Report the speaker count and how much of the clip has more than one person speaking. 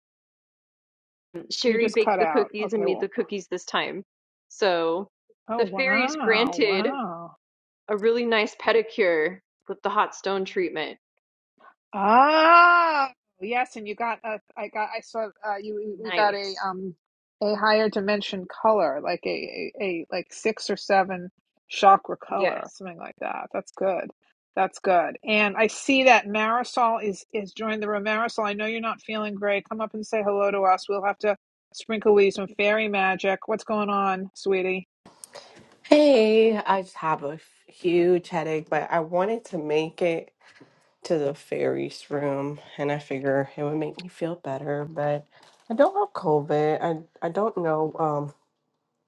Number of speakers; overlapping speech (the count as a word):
three, about 7%